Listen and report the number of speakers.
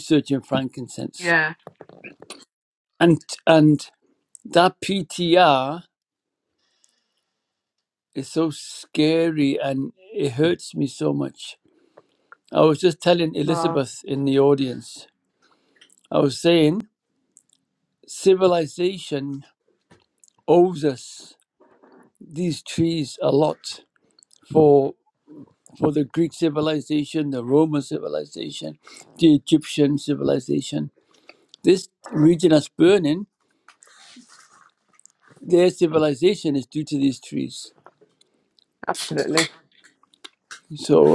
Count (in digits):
2